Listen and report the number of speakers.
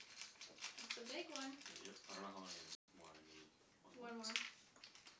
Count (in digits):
2